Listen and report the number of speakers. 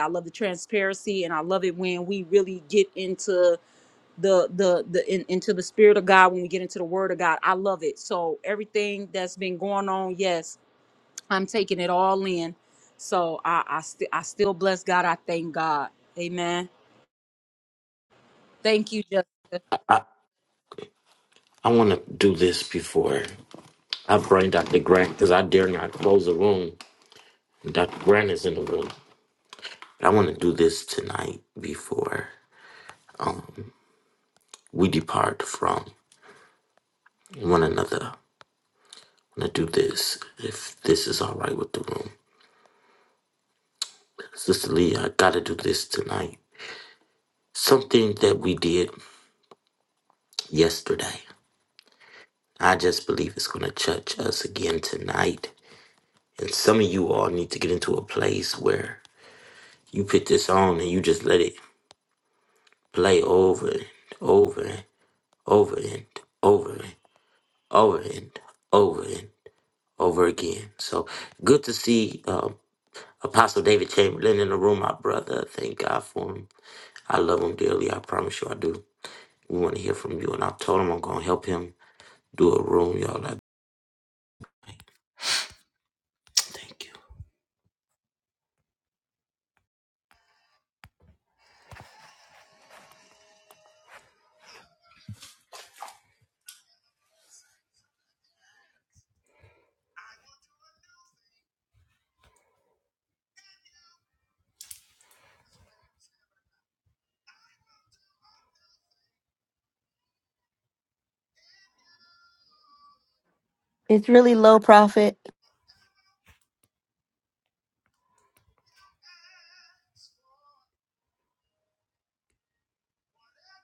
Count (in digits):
3